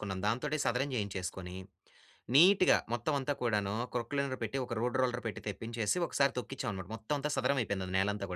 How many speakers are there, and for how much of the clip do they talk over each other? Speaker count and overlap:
one, no overlap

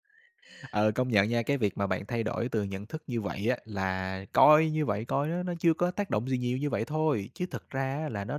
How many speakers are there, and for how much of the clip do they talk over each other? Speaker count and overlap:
one, no overlap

